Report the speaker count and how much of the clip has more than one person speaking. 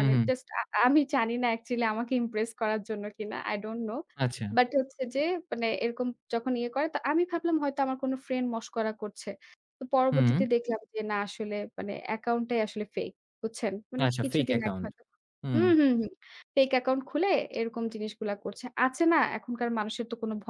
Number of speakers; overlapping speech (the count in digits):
2, about 8%